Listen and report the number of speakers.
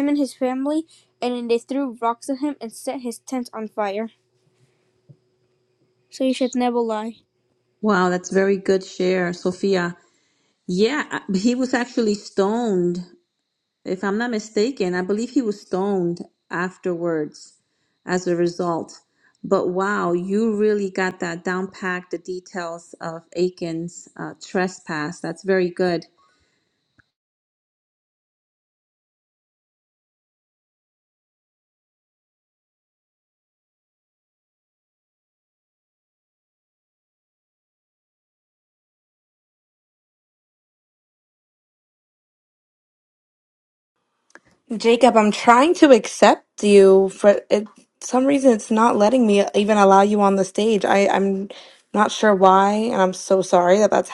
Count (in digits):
3